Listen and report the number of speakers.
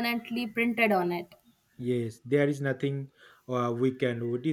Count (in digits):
2